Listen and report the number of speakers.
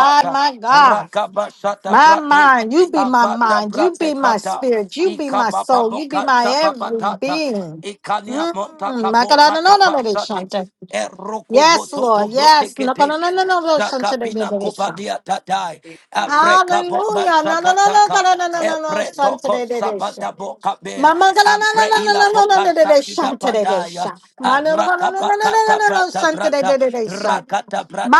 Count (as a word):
two